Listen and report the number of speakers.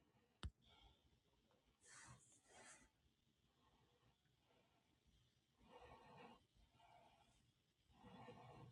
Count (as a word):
zero